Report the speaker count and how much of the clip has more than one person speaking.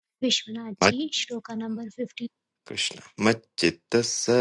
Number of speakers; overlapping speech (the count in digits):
2, about 3%